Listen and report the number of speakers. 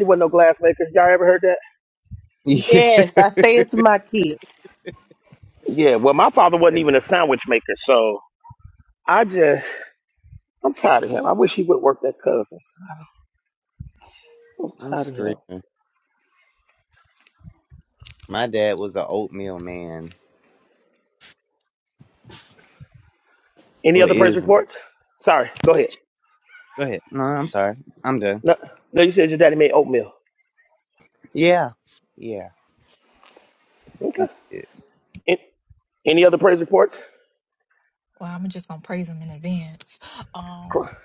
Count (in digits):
4